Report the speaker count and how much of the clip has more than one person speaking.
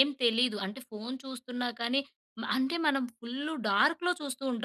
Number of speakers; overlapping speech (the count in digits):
1, no overlap